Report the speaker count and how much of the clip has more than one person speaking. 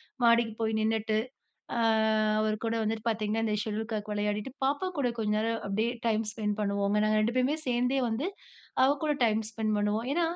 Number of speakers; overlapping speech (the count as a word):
one, no overlap